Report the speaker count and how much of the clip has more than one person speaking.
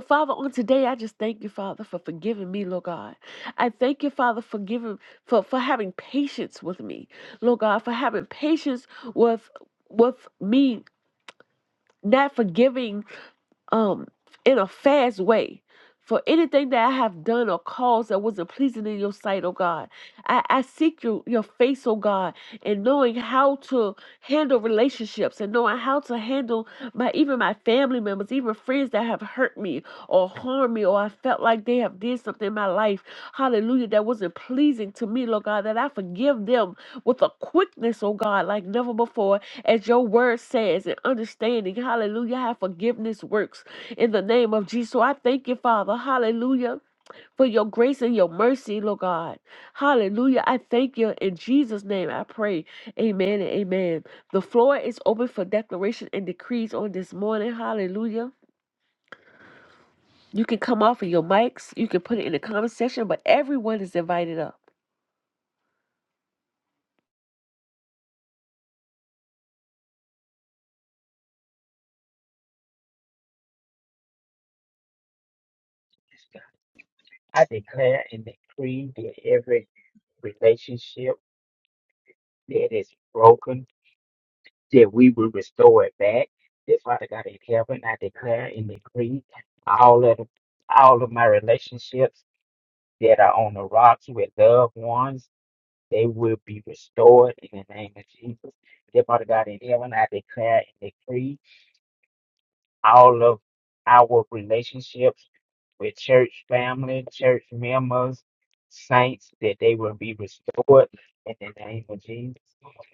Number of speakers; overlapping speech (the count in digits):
2, no overlap